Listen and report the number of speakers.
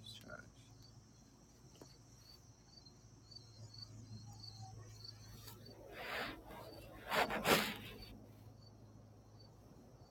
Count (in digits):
0